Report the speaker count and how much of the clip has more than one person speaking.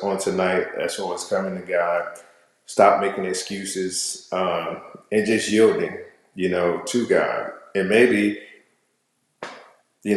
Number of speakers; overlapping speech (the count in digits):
1, no overlap